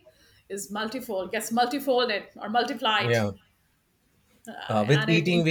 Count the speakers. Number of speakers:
2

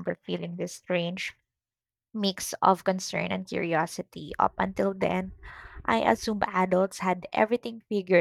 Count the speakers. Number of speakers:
1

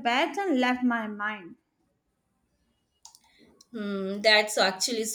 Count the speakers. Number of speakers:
2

